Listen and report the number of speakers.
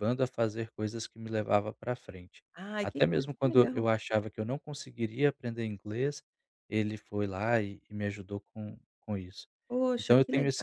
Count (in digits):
2